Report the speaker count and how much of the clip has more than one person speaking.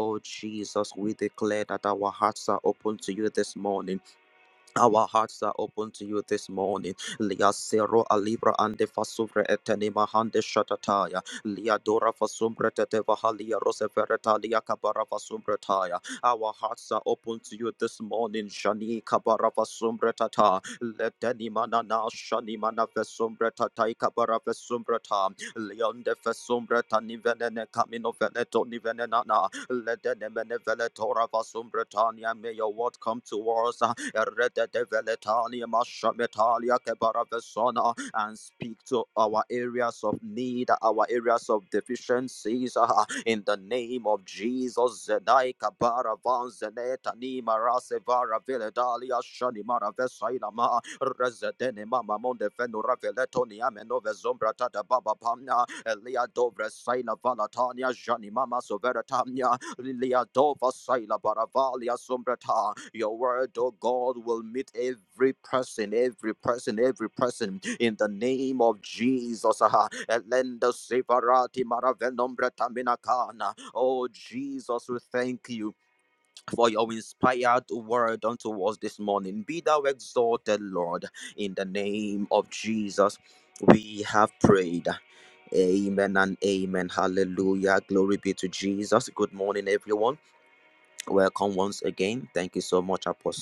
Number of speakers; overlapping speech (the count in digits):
1, no overlap